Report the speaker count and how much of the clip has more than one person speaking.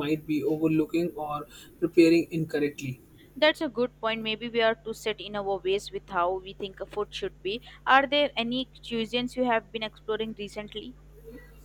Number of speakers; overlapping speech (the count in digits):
2, no overlap